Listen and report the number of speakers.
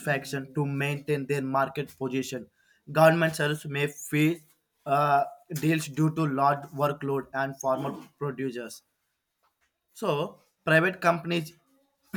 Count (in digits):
1